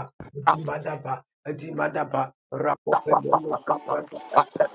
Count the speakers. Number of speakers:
1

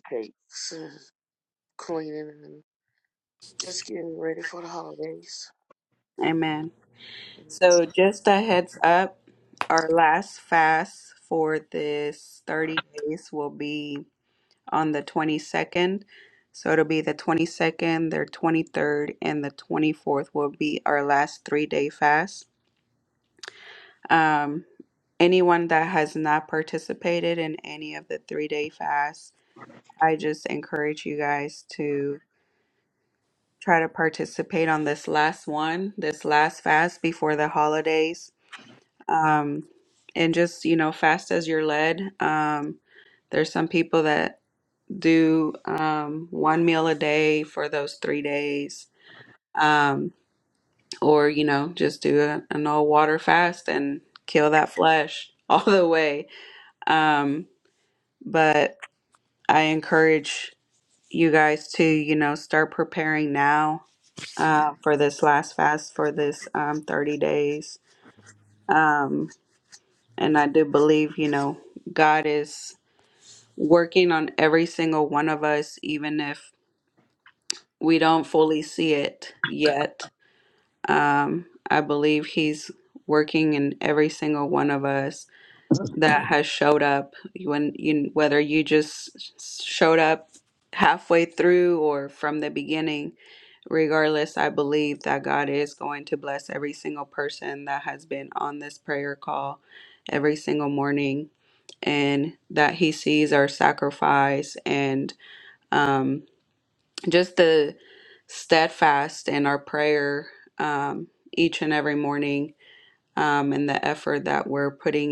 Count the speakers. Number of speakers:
2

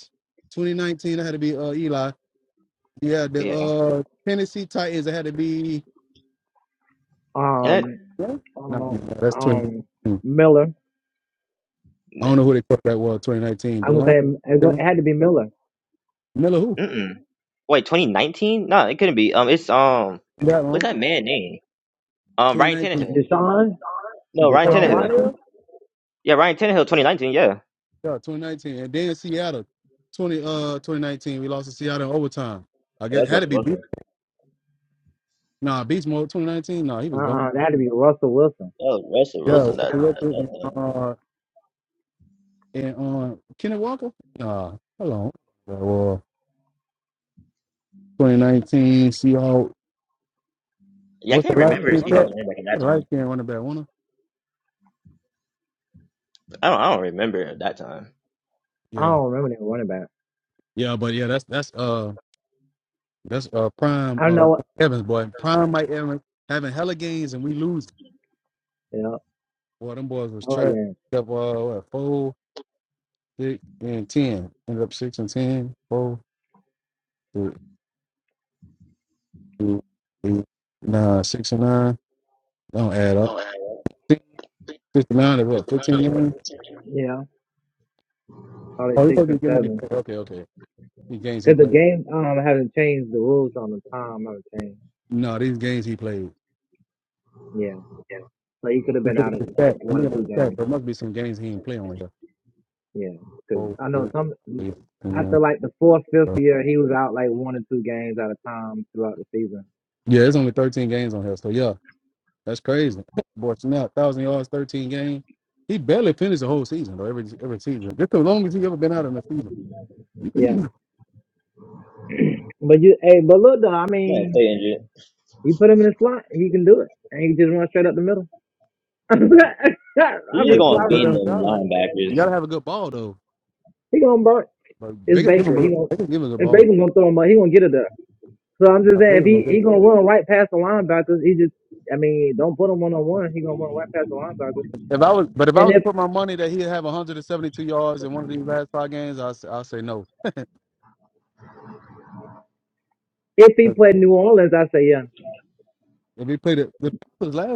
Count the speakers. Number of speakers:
3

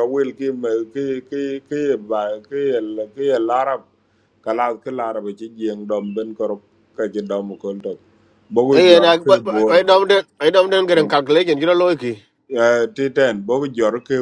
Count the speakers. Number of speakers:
2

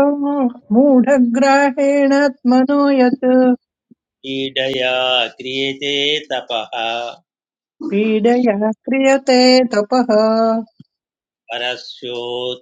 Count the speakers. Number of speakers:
2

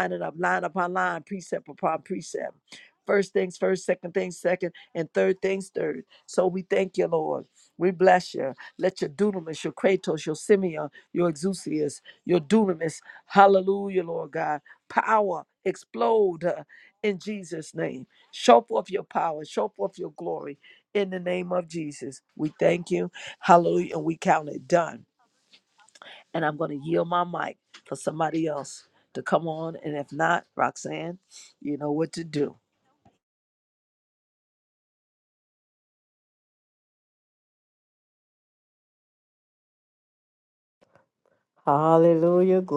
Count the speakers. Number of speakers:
2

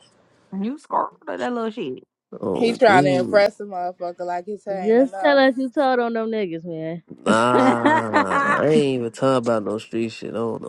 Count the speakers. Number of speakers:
4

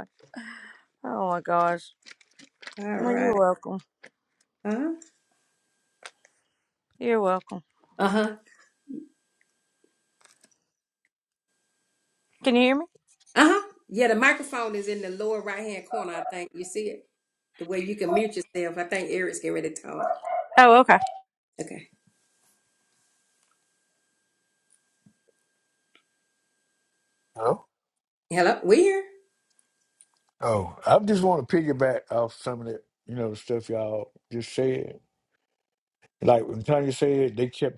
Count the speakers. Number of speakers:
3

